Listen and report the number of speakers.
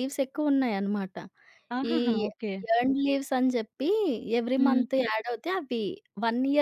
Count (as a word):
two